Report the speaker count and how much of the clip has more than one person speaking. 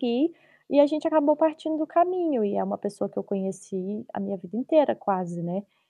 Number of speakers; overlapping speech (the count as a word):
one, no overlap